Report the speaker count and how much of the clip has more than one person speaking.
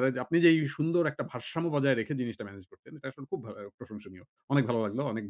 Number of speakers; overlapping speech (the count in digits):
1, no overlap